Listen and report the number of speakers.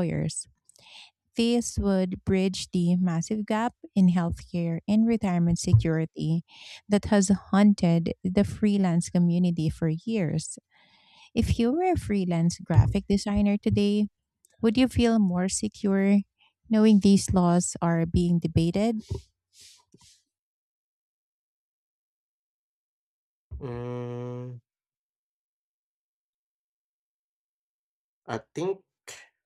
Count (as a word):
two